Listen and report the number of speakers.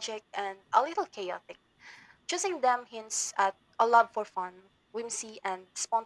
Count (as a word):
one